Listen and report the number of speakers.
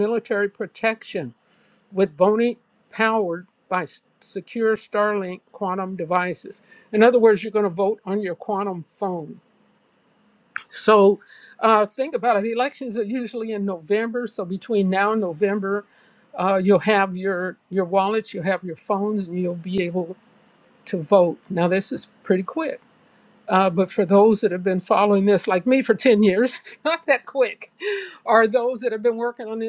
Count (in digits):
1